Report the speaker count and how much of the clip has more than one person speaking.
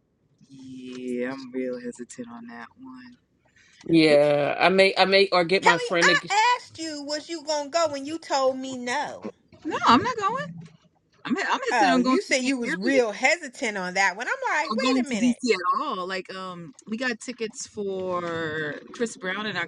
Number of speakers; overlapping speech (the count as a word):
three, about 11%